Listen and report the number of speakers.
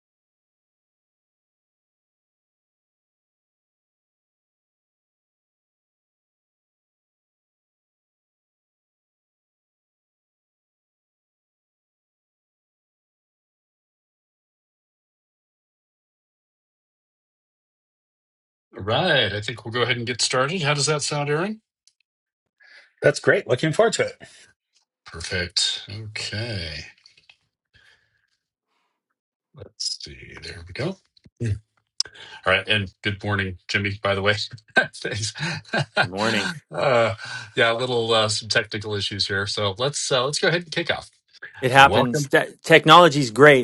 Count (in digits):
3